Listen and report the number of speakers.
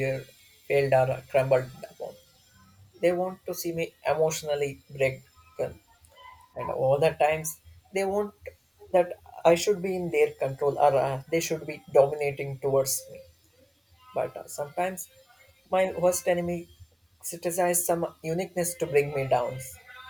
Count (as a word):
one